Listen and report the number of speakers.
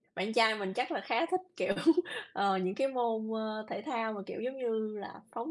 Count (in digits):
1